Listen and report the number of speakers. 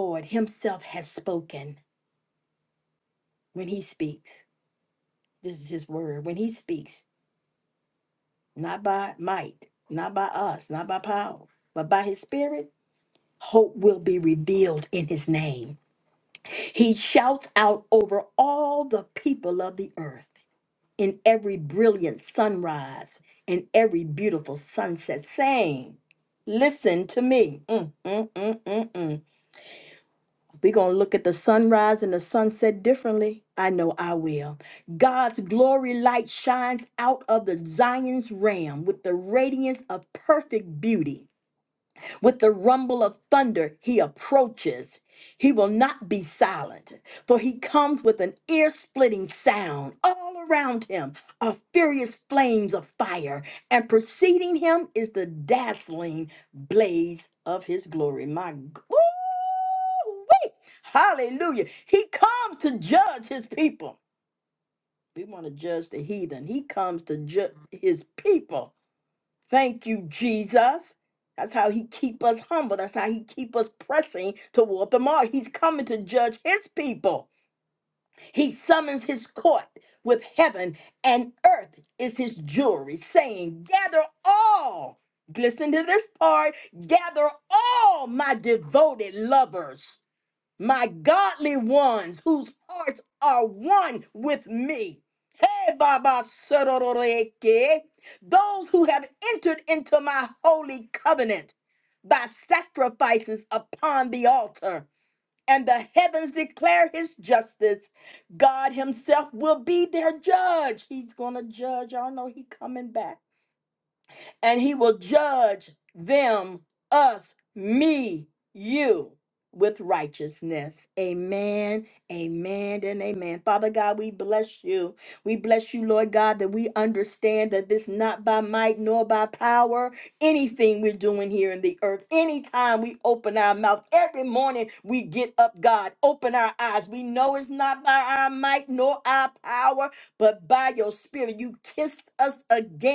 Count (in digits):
1